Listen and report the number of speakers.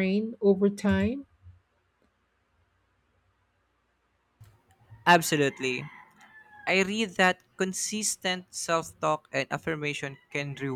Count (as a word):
two